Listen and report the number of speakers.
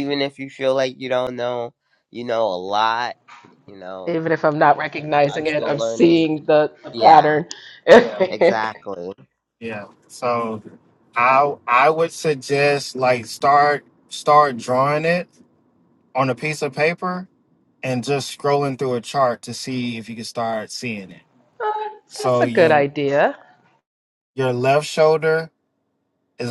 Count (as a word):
three